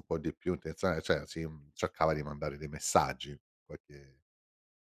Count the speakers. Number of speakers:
one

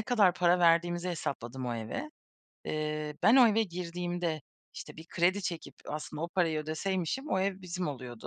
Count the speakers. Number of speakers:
one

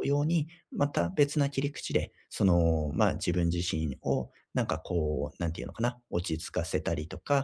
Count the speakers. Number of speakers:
one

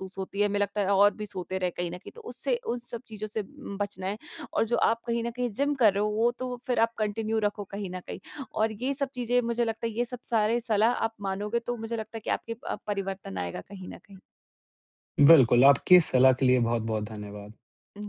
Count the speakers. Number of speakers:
two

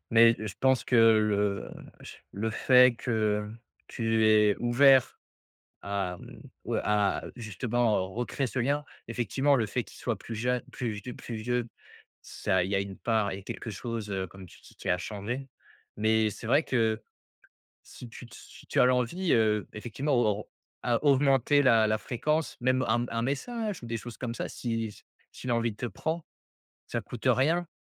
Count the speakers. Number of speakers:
one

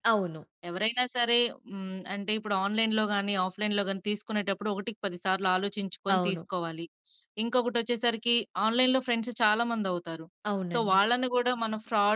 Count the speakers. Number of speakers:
two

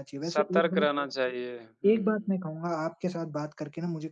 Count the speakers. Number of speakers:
two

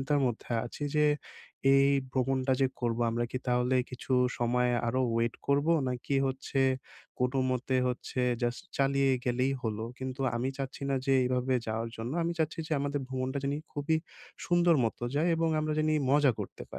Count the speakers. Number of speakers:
one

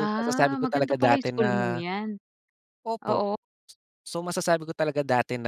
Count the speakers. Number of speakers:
two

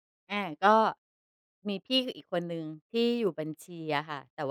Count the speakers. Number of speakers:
one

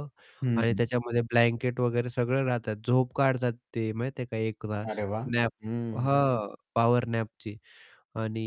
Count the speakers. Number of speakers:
two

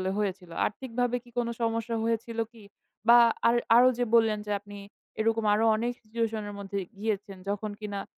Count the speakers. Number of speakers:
one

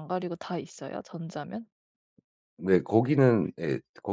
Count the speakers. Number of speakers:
two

